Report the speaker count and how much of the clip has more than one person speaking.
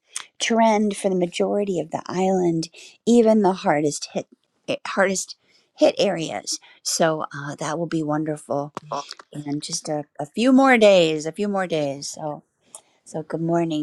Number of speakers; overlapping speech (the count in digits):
1, no overlap